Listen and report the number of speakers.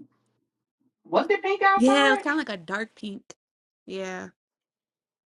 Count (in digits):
2